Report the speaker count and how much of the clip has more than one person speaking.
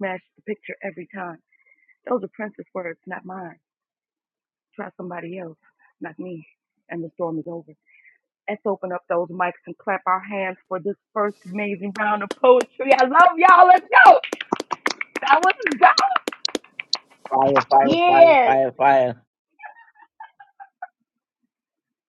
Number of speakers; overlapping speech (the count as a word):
two, about 3%